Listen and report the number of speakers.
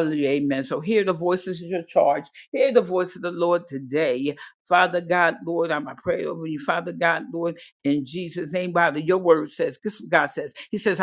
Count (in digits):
1